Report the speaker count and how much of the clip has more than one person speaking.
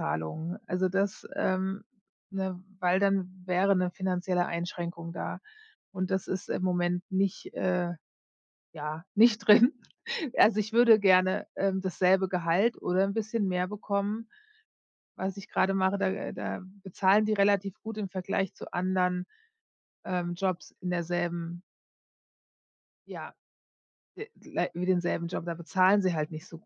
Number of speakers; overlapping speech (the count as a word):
one, no overlap